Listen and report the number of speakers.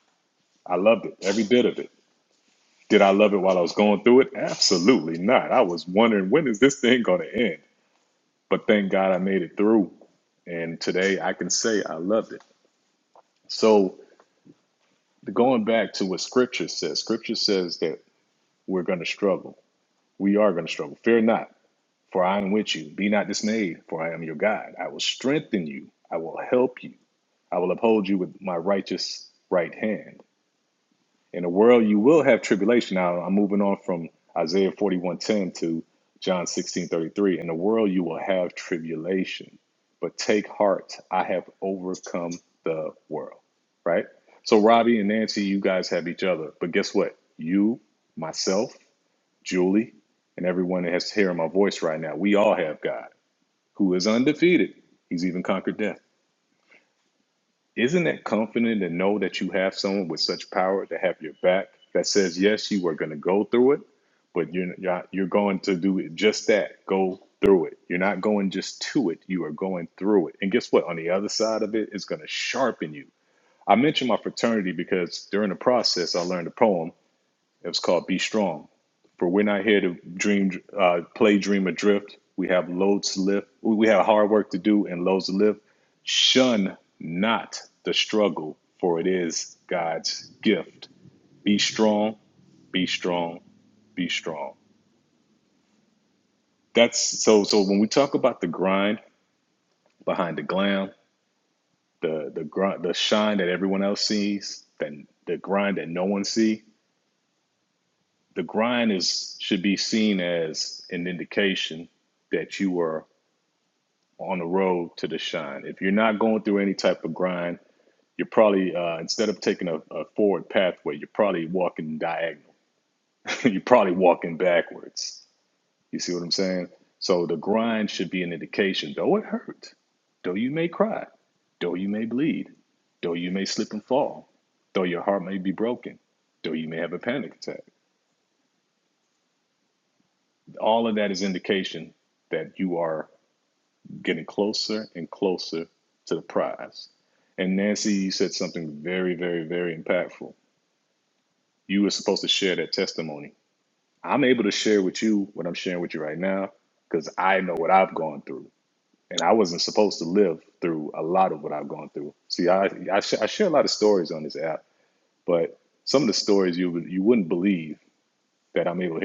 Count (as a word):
one